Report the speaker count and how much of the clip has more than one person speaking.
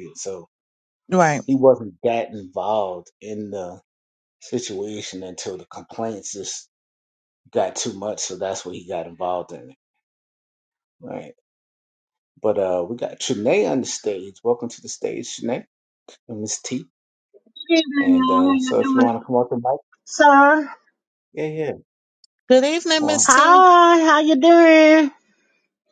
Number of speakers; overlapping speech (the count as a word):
three, about 7%